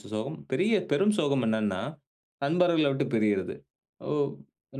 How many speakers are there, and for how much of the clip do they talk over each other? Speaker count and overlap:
1, no overlap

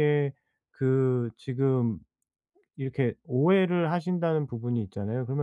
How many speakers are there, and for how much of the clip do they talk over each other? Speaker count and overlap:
1, no overlap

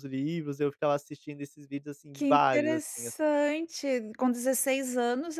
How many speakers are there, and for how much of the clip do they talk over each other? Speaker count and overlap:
2, about 13%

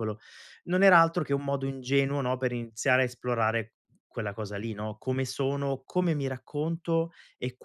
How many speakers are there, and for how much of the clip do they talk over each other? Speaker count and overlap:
1, no overlap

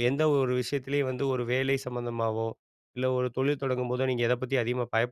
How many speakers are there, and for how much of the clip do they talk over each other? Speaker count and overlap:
1, no overlap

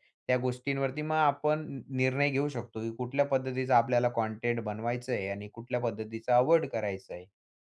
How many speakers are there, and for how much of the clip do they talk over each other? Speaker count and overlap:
1, no overlap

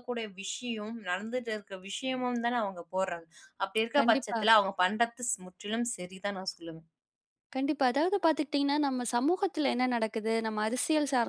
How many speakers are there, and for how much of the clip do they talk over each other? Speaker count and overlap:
2, about 5%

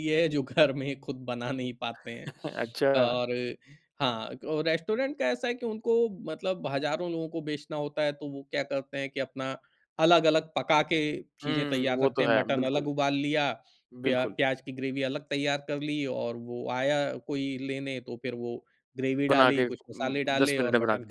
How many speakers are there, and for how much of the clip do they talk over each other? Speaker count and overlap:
2, about 18%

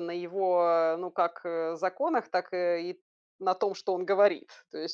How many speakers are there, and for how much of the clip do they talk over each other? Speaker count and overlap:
1, no overlap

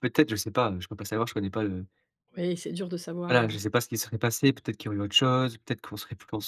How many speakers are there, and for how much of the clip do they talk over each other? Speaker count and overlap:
2, about 4%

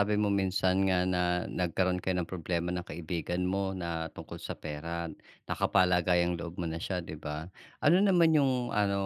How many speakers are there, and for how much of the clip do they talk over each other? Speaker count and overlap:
1, no overlap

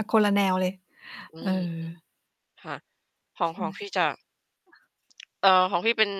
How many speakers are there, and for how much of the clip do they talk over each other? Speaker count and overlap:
2, about 4%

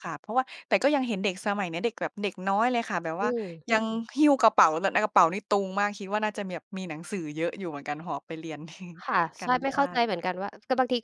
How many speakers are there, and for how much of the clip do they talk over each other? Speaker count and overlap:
2, about 7%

